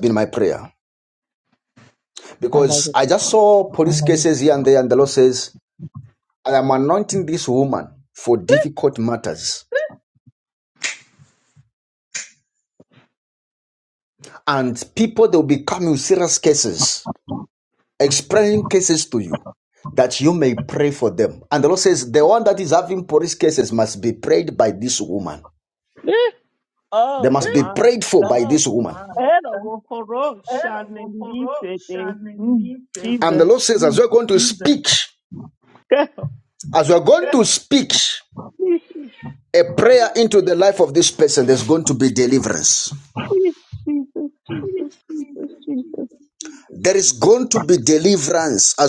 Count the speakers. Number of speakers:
2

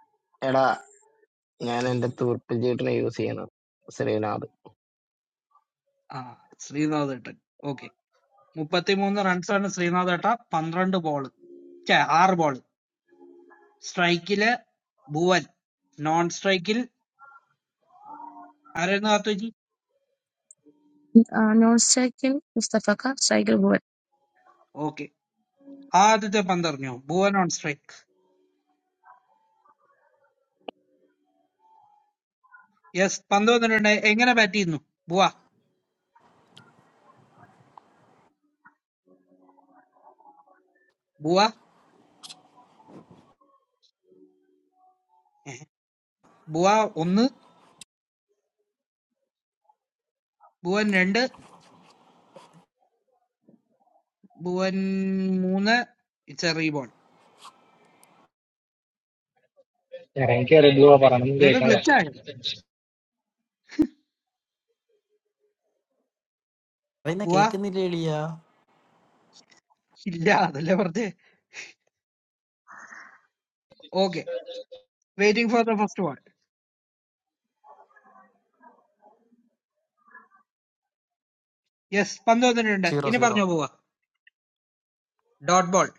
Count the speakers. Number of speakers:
5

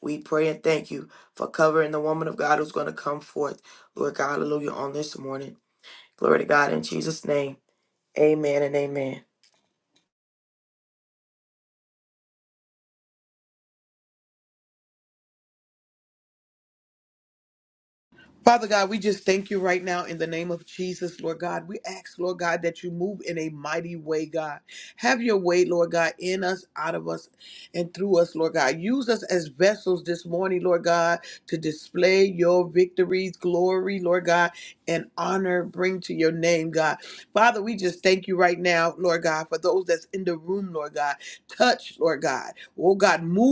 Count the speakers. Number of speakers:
2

